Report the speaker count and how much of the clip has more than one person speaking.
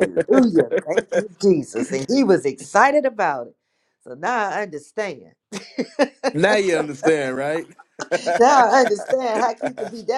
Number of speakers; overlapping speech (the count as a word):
two, no overlap